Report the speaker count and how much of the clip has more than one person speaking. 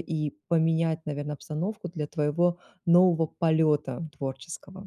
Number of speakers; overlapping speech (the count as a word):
one, no overlap